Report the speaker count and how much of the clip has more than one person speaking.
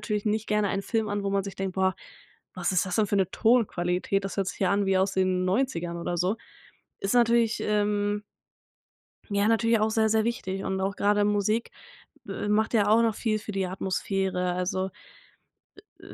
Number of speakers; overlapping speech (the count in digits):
1, no overlap